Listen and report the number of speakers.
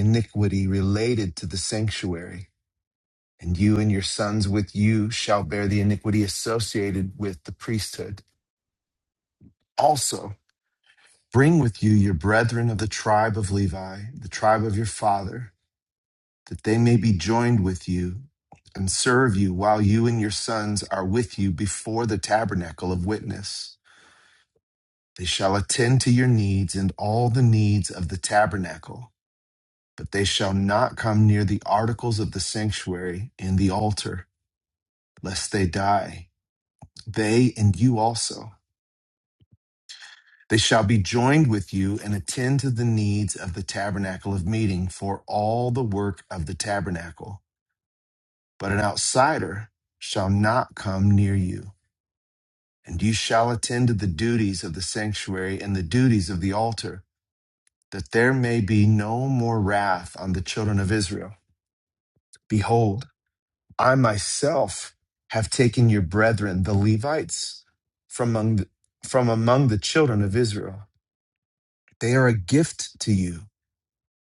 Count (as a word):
one